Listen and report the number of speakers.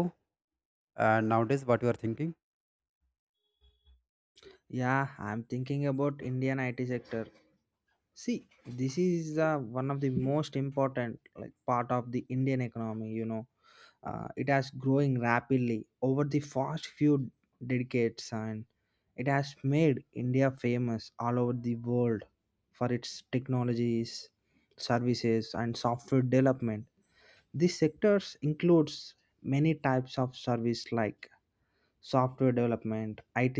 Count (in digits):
2